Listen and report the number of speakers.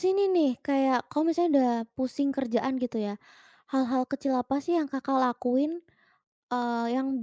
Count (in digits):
1